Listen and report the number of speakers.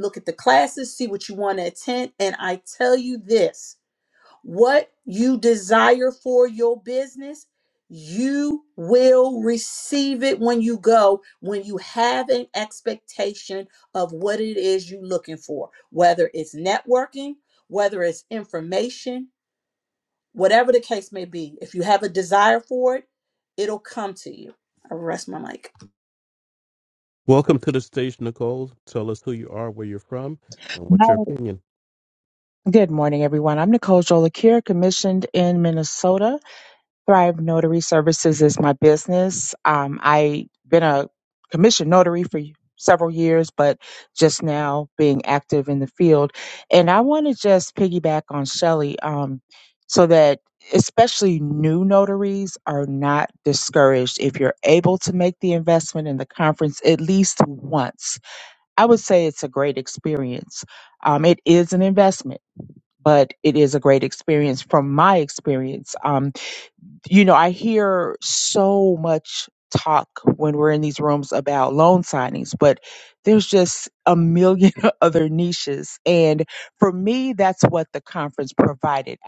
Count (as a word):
three